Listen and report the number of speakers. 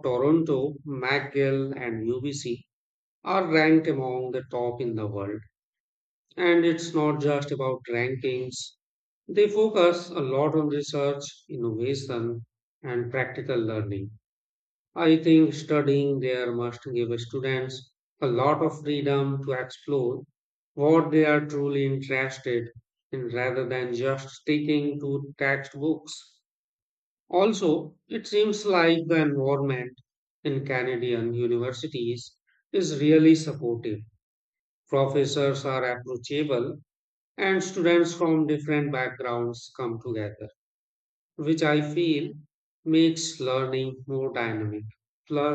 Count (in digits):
1